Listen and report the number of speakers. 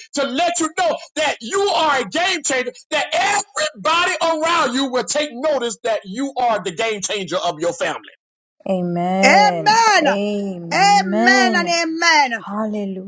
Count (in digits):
3